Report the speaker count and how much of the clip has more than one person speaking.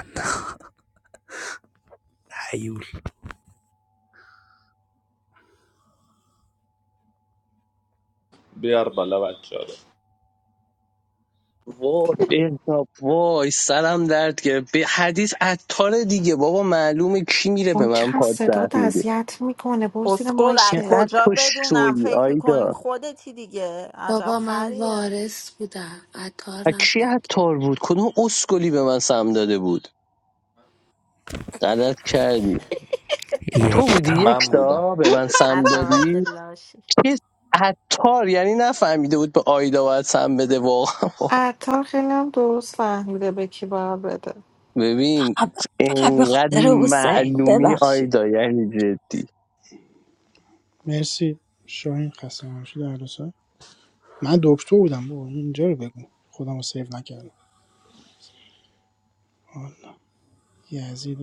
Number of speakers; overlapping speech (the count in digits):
7, about 12%